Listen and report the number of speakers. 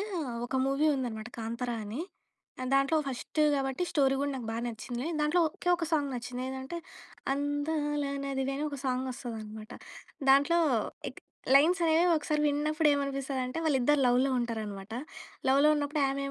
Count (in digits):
1